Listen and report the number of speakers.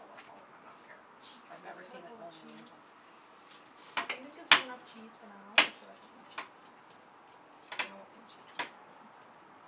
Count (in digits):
2